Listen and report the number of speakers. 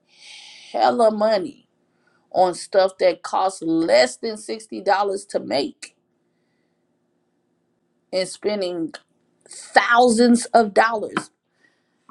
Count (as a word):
one